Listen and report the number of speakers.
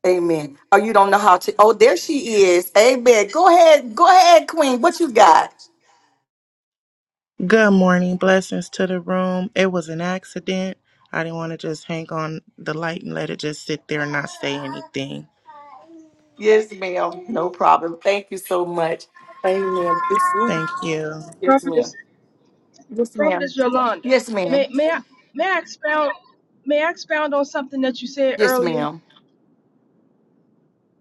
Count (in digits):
3